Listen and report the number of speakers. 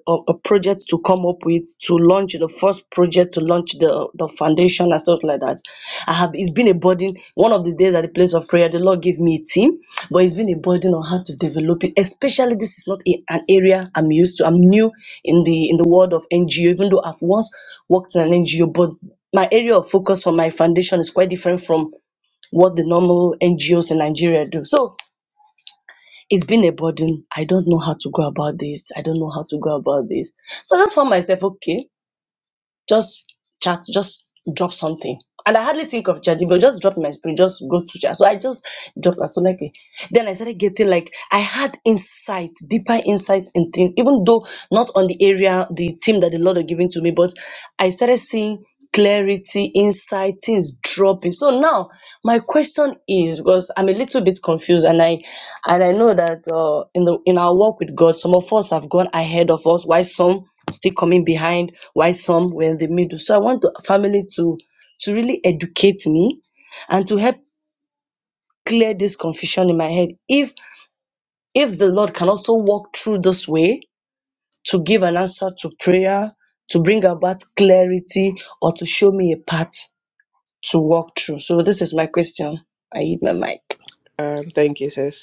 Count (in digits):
2